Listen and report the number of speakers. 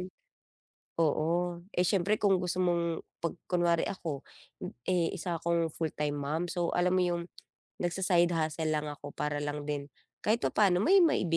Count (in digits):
1